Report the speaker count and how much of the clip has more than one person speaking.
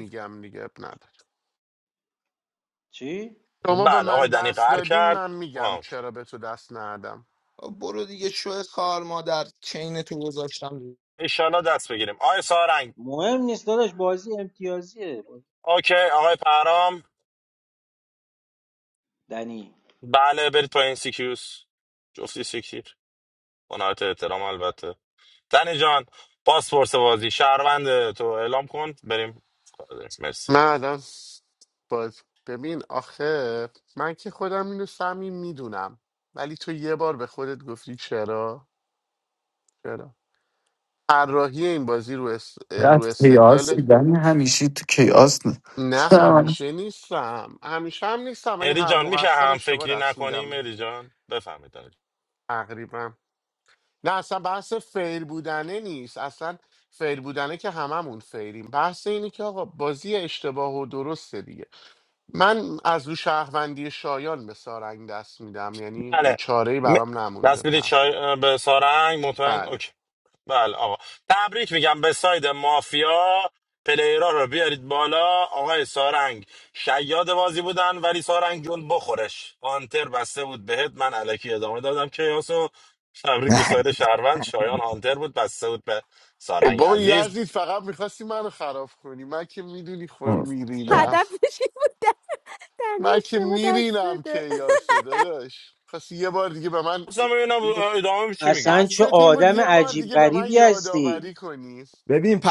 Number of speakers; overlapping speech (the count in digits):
6, about 11%